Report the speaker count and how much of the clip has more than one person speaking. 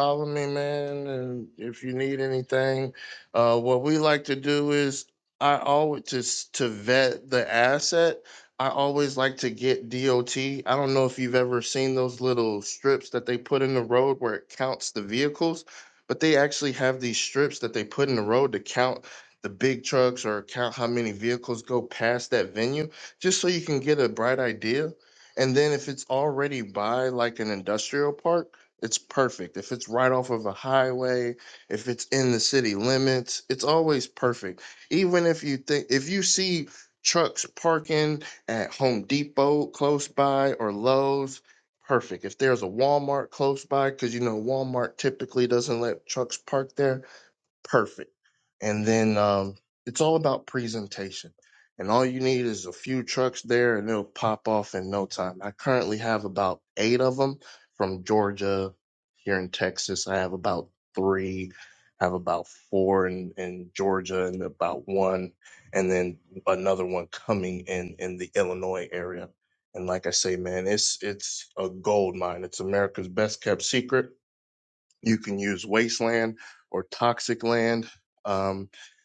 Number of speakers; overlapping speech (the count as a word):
one, no overlap